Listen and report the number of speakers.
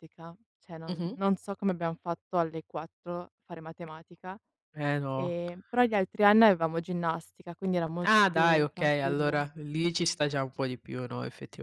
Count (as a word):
two